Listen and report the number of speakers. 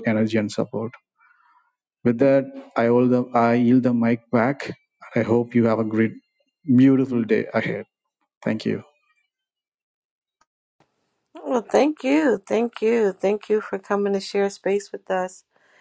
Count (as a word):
two